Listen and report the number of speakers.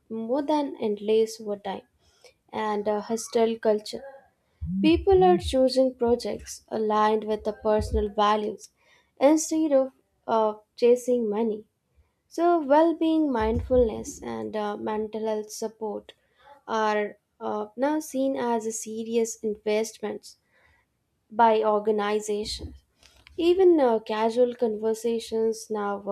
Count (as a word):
one